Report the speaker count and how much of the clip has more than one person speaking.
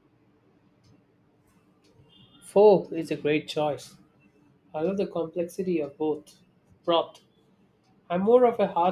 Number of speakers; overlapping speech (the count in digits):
1, no overlap